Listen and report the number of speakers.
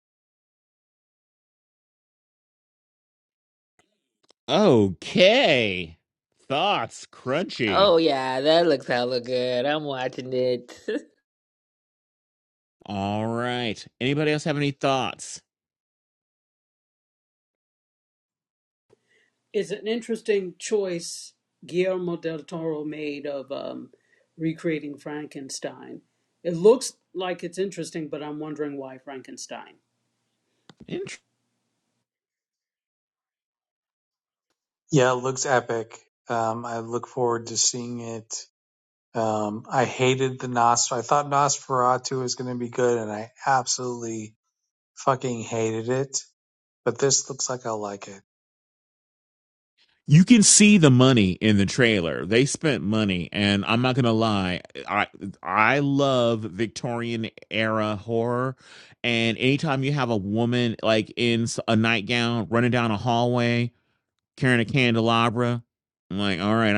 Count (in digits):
4